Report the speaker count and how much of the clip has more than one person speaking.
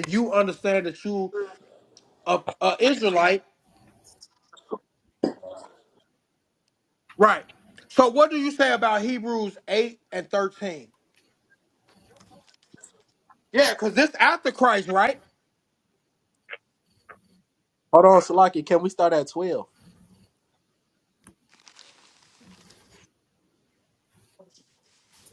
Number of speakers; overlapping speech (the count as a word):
two, no overlap